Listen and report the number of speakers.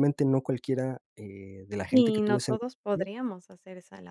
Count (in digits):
2